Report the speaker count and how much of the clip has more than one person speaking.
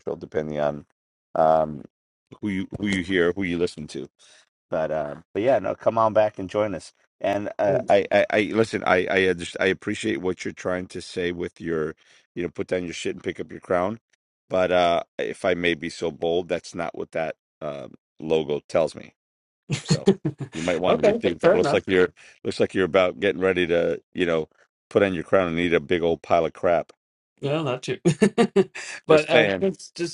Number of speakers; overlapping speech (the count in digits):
2, about 5%